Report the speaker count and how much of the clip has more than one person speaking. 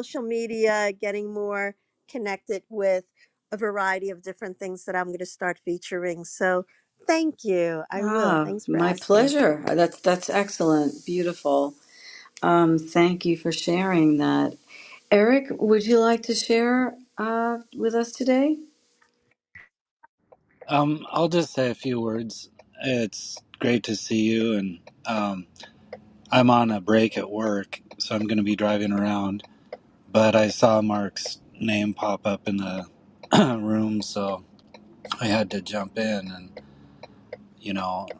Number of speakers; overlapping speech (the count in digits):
3, about 4%